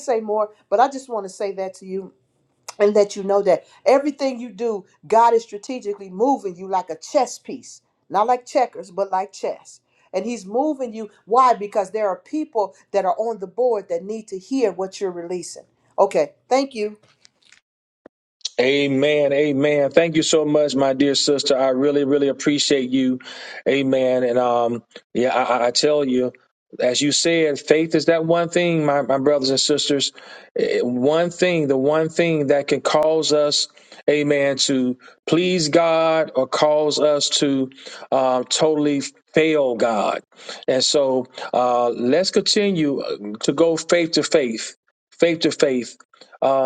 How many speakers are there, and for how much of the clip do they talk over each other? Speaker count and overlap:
2, no overlap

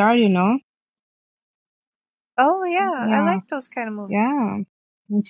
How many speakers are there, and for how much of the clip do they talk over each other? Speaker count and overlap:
2, about 8%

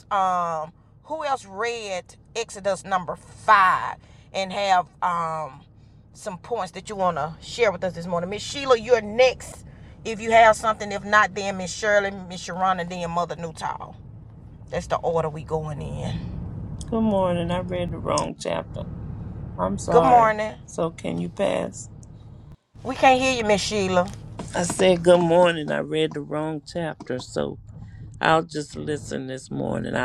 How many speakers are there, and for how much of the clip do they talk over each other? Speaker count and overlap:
2, about 2%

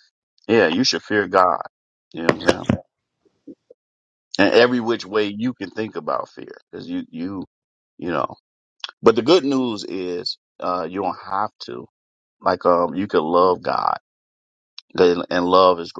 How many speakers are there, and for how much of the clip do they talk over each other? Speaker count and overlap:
1, no overlap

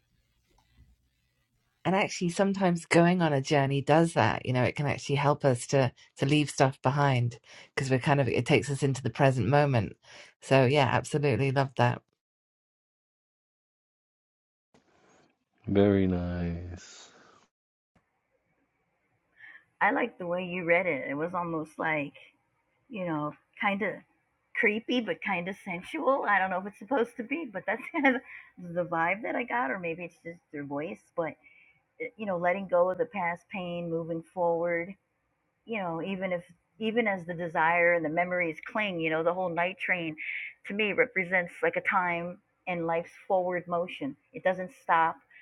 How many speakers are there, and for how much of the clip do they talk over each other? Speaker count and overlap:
3, no overlap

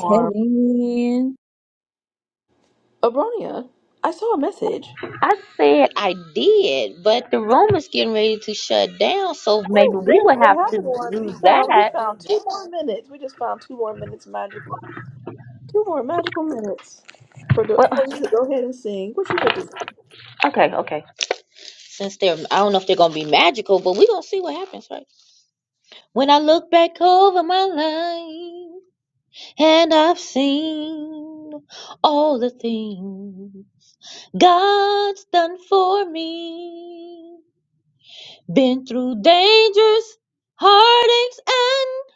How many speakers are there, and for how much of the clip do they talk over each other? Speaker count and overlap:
3, about 6%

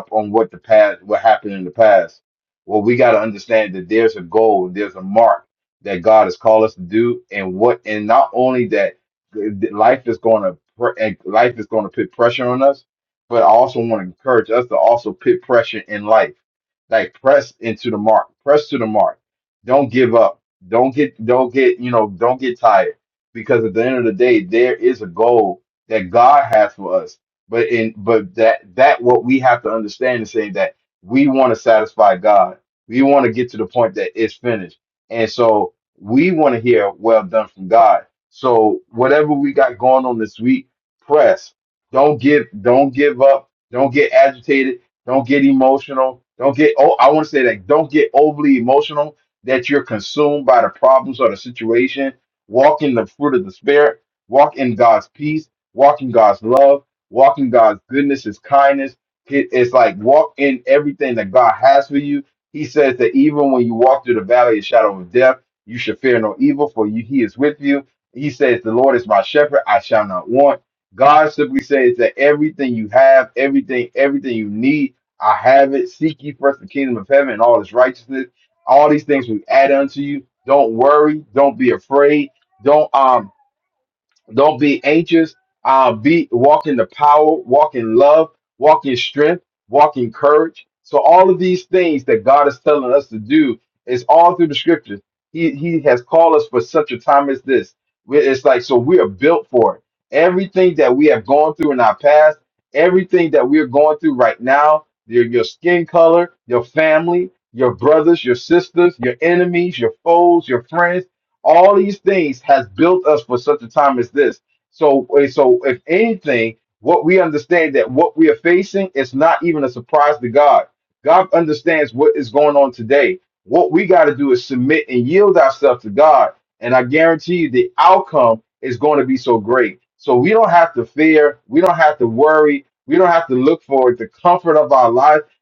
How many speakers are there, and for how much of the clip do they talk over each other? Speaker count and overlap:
1, no overlap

